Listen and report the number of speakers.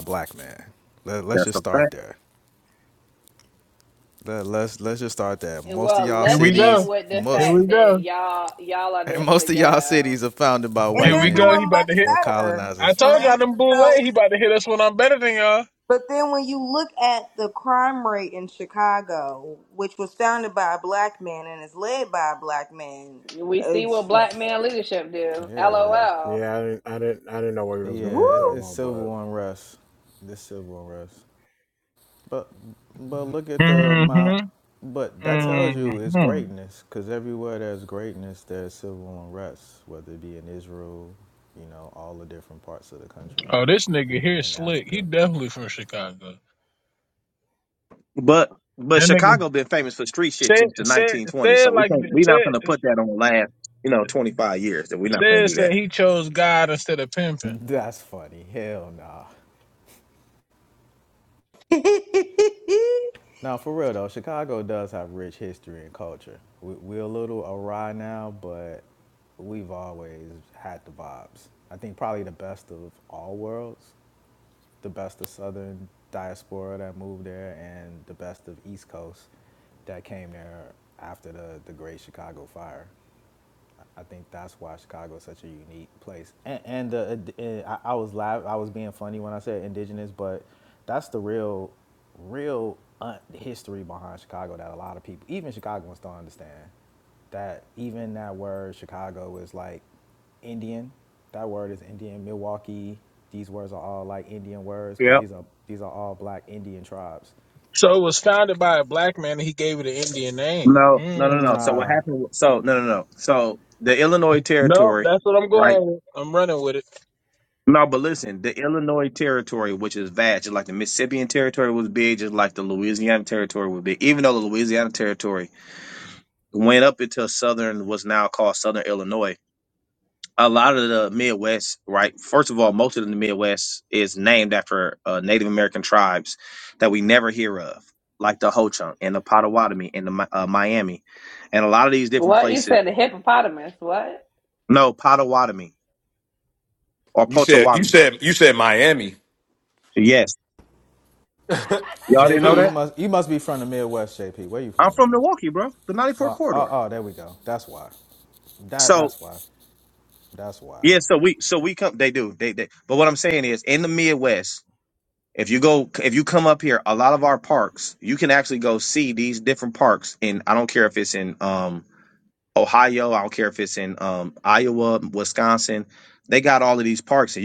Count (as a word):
seven